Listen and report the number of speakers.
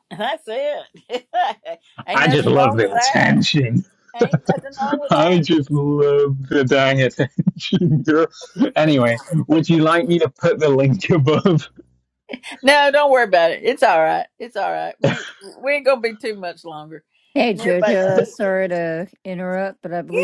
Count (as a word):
three